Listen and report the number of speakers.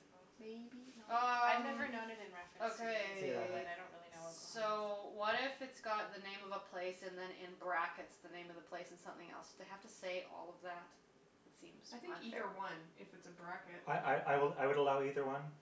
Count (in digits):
4